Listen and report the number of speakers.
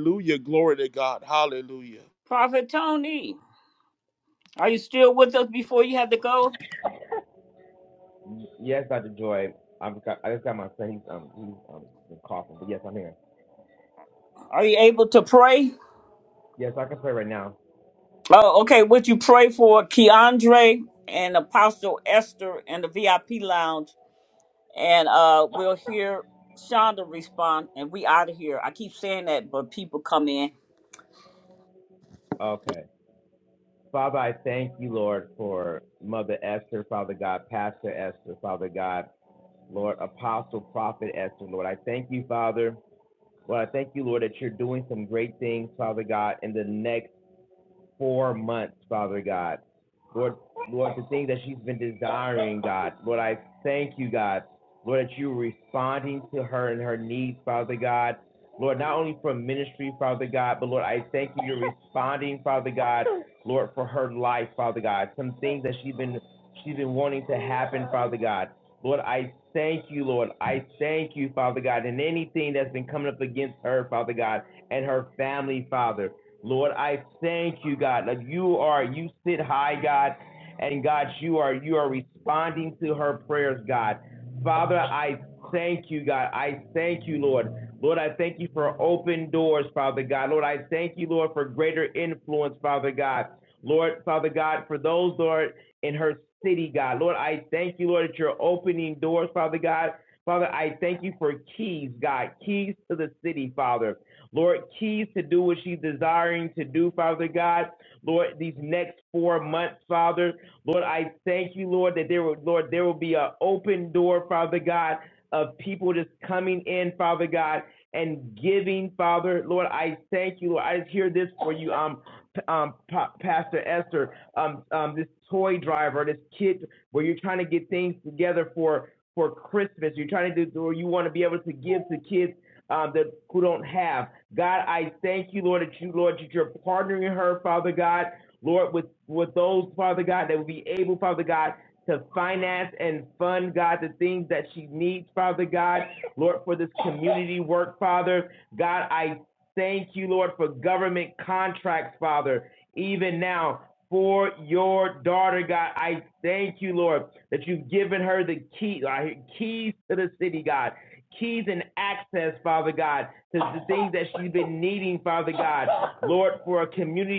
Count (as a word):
three